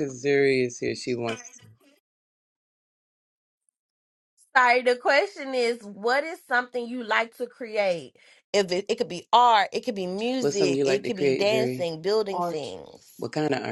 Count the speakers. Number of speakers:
2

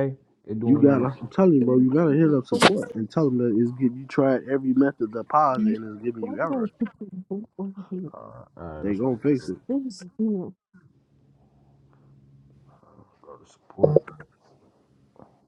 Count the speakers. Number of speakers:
3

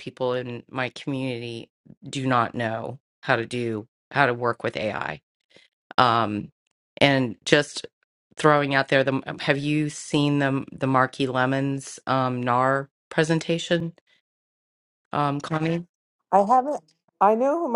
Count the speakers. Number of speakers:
2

